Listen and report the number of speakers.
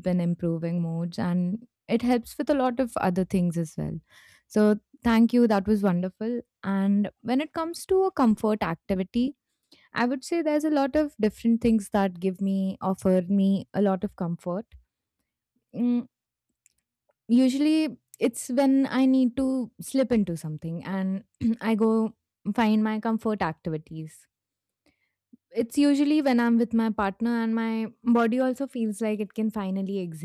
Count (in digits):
1